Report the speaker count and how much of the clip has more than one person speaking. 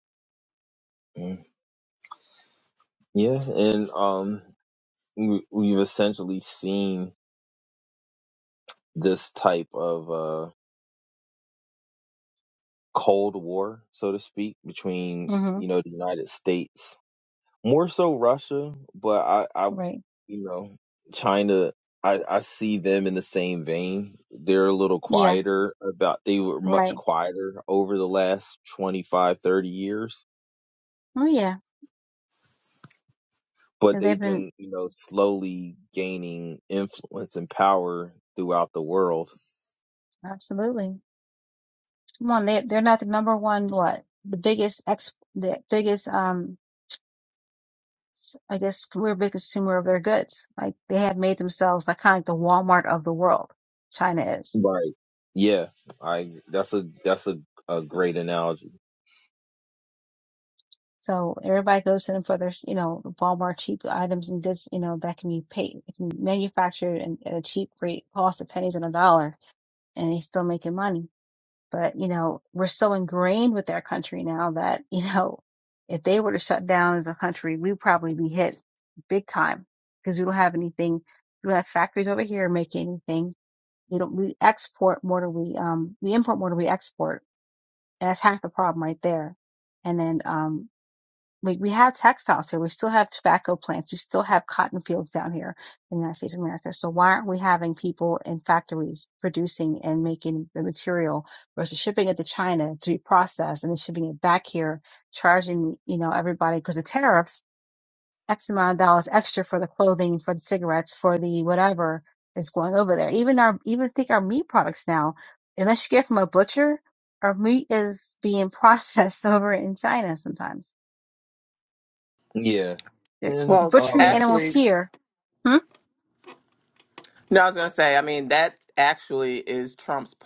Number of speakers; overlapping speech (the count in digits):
3, about 2%